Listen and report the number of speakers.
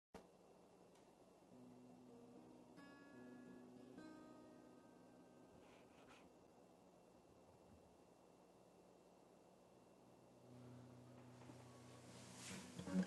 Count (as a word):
zero